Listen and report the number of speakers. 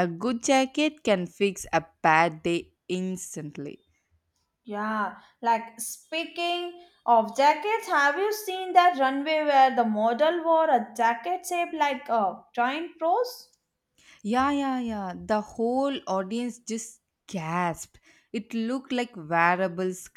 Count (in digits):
2